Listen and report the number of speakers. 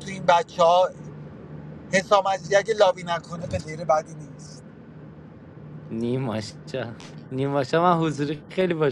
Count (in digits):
2